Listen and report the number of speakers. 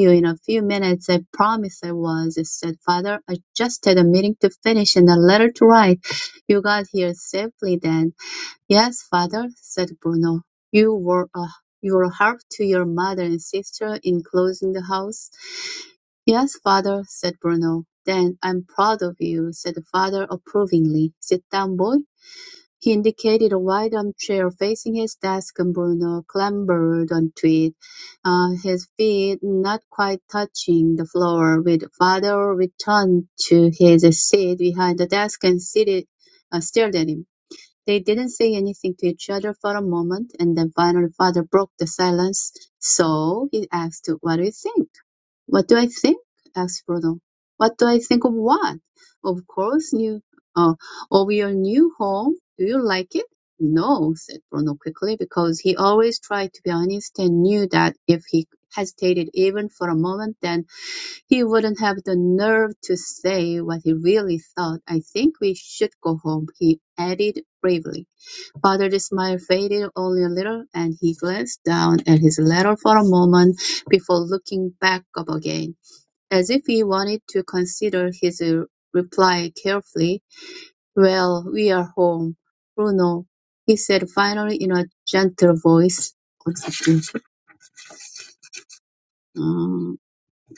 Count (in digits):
1